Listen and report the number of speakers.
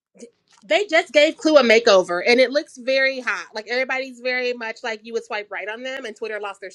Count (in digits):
1